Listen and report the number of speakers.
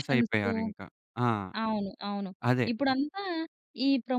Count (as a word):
two